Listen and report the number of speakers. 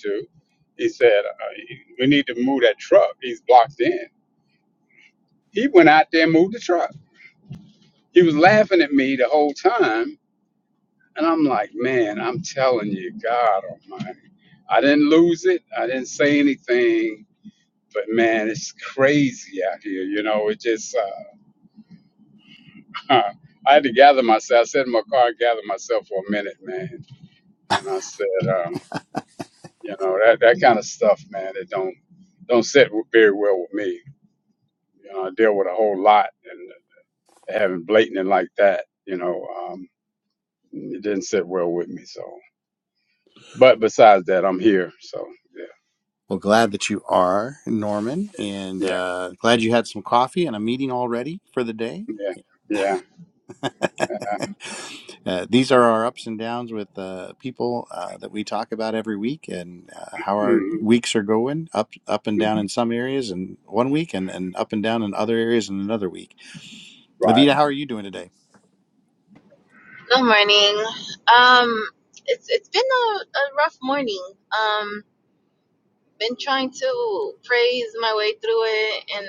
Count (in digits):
3